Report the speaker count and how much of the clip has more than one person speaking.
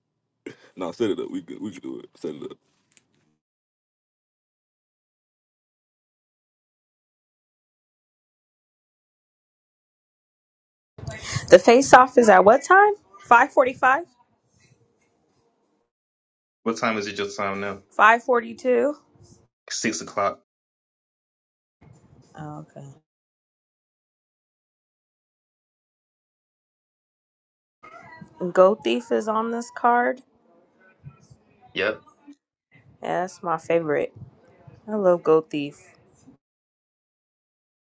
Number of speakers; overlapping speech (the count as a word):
three, no overlap